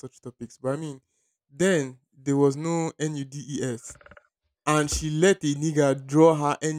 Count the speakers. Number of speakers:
one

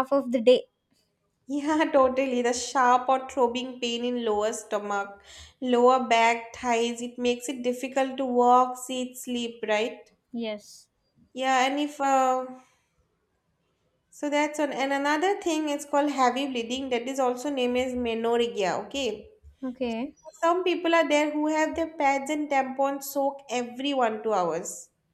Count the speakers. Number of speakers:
two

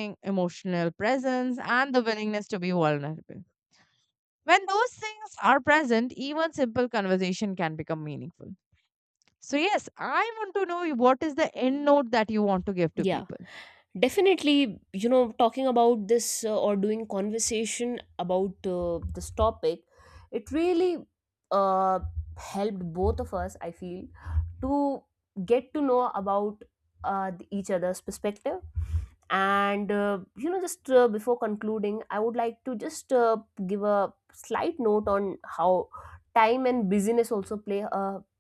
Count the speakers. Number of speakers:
two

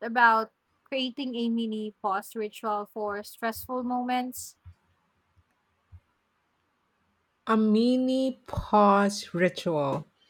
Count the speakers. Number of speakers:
two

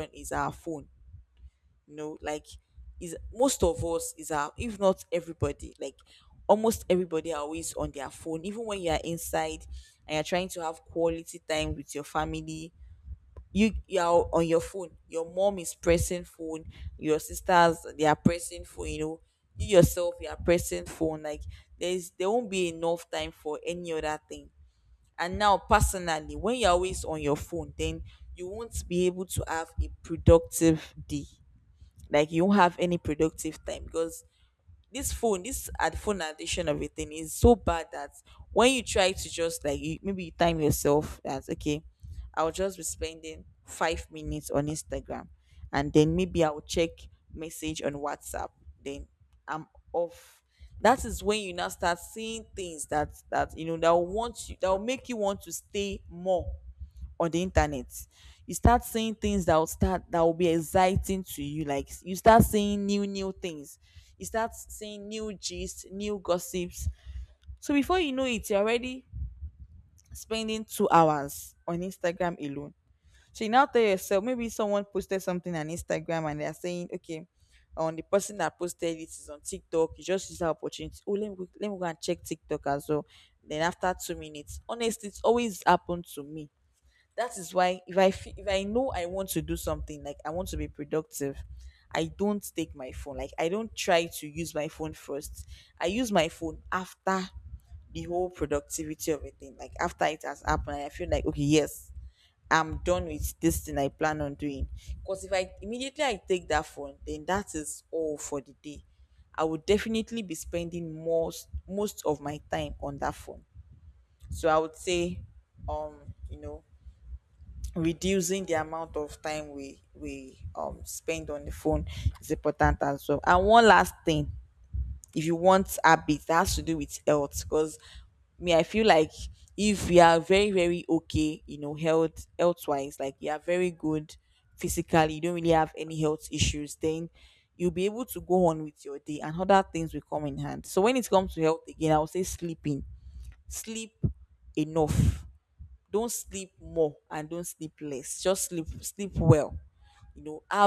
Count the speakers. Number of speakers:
one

